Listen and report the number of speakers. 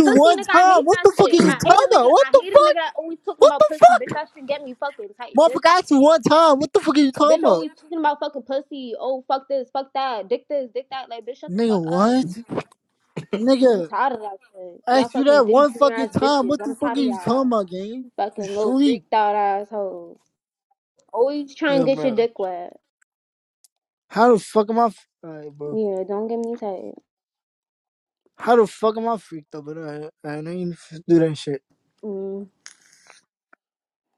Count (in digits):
2